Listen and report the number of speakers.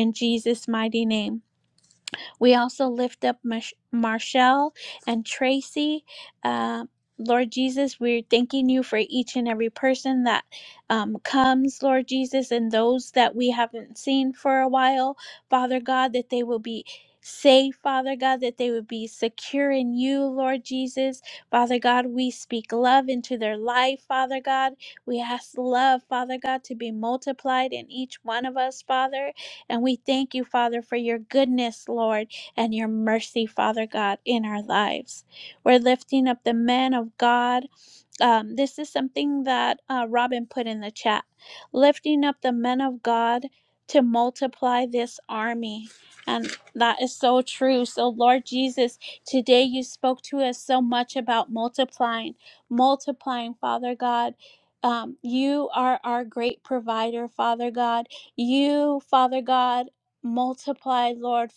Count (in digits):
1